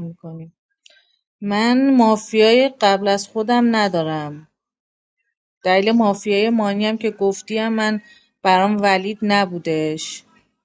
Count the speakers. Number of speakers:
one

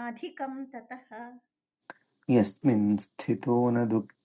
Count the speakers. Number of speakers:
two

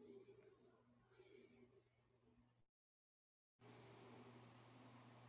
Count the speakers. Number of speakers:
zero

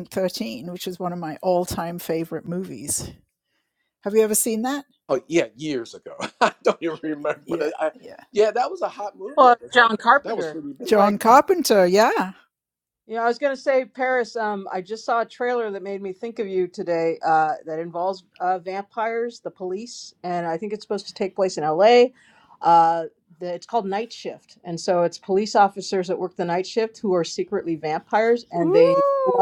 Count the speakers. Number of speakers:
three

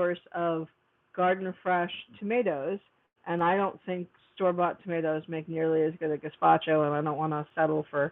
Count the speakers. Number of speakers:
one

